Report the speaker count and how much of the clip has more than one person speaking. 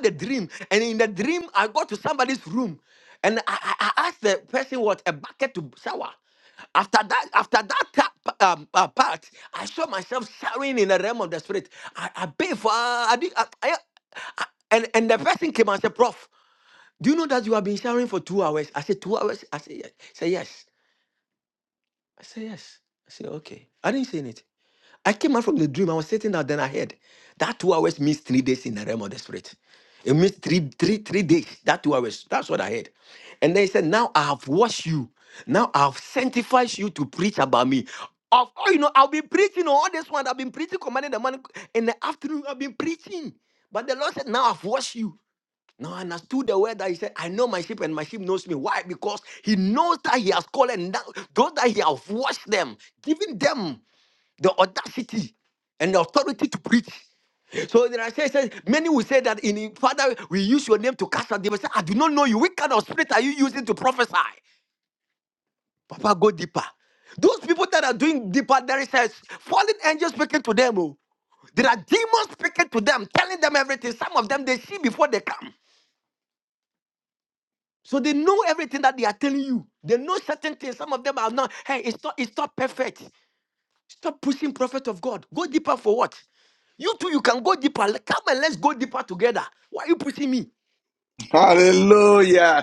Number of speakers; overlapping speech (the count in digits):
2, no overlap